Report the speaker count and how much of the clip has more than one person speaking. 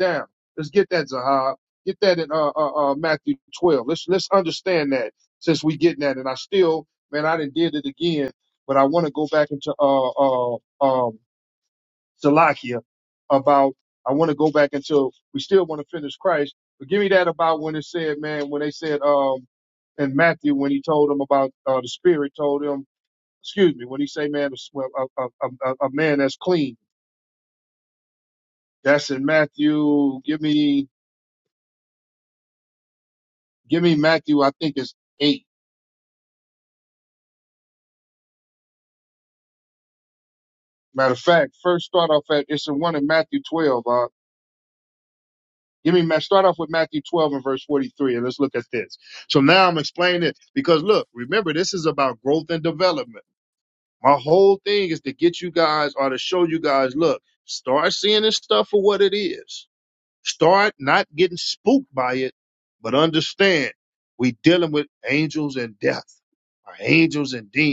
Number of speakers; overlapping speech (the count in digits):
1, no overlap